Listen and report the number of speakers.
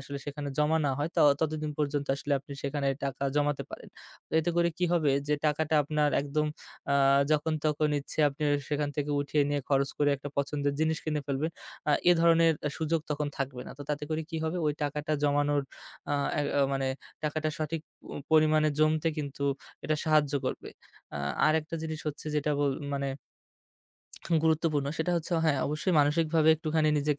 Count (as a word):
one